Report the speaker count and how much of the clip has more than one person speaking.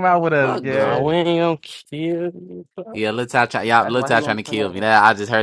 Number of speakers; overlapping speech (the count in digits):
3, about 32%